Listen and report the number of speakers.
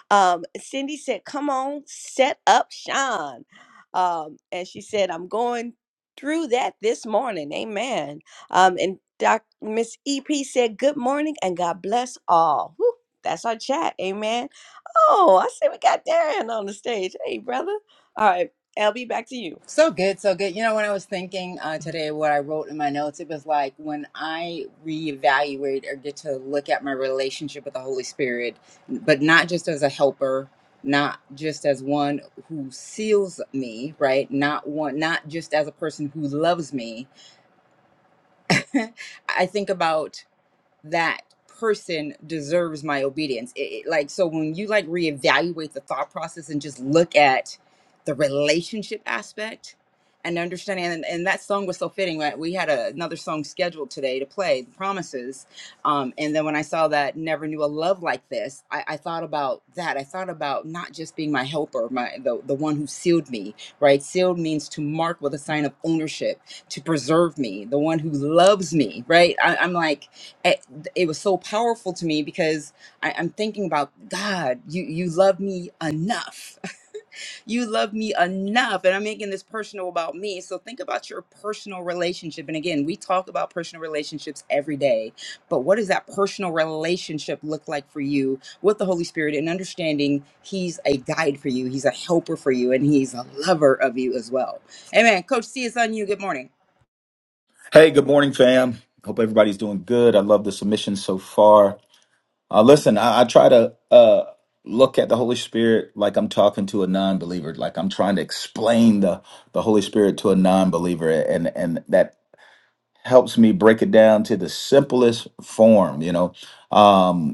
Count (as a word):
three